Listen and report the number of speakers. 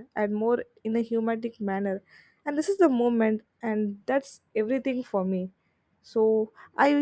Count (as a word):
one